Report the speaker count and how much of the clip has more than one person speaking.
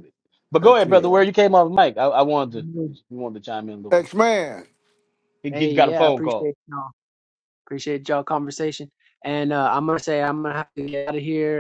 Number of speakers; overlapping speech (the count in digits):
3, about 13%